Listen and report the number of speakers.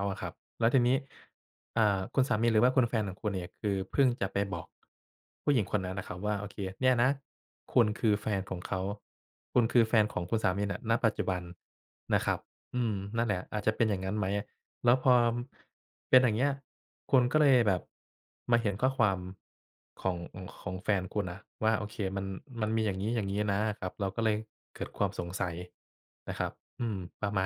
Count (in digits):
1